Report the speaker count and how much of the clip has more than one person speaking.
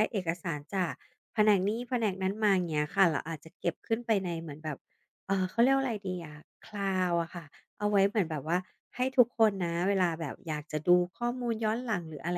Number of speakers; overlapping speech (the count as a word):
one, no overlap